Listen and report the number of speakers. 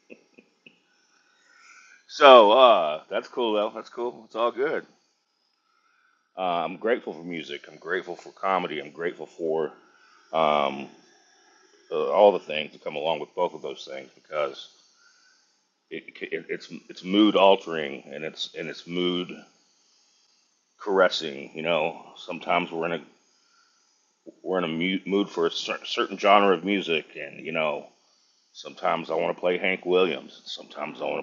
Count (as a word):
one